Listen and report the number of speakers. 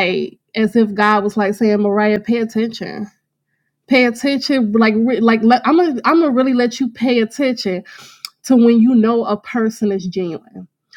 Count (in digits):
1